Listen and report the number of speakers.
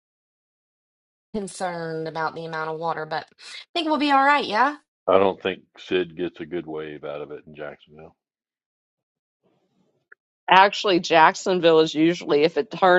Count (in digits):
3